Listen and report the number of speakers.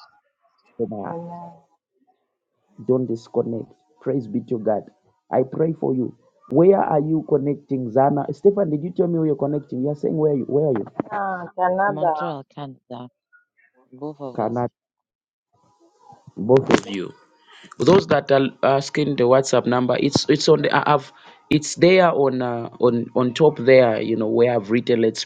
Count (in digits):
3